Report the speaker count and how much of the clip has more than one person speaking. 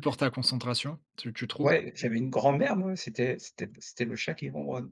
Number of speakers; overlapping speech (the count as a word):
two, about 2%